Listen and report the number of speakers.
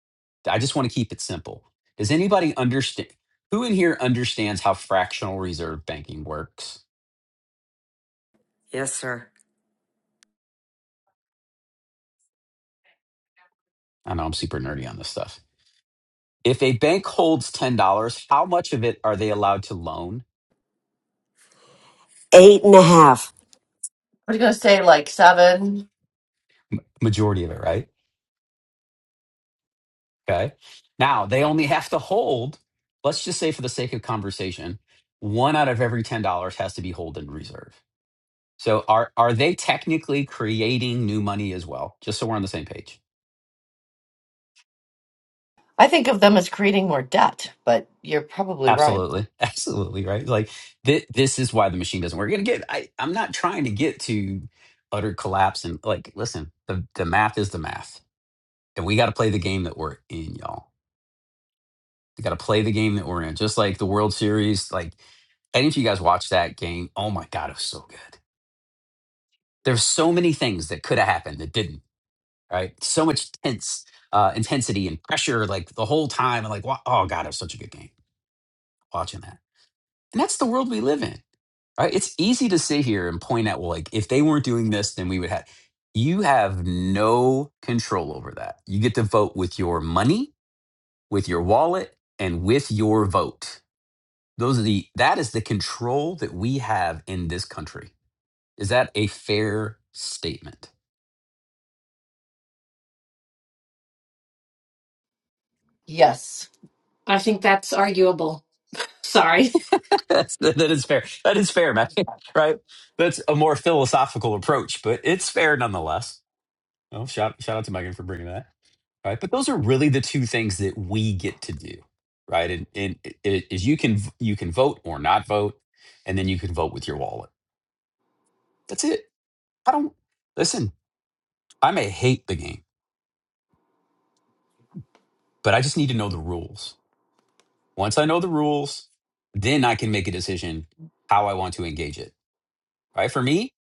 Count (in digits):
4